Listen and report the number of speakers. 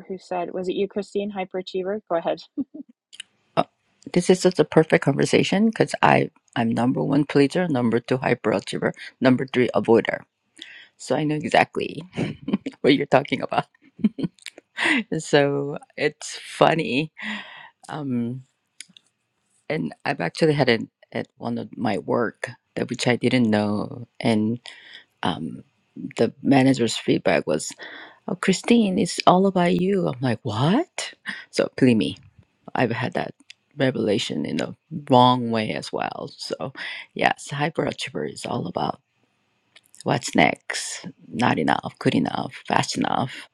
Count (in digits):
2